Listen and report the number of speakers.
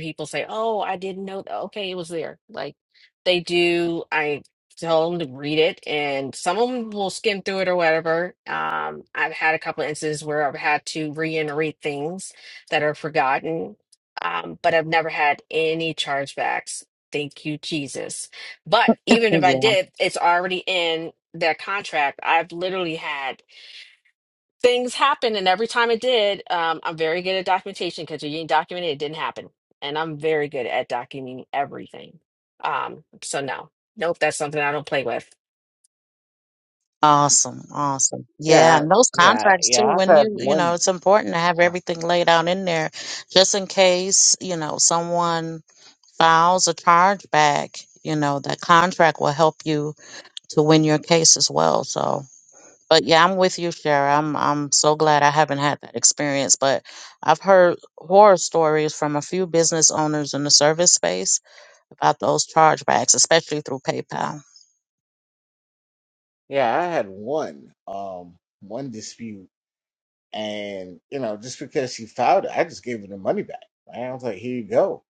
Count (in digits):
3